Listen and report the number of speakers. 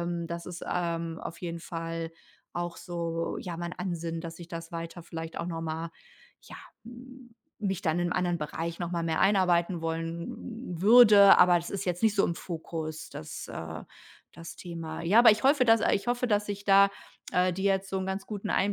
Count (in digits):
1